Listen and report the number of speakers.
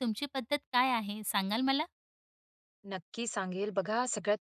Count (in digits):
2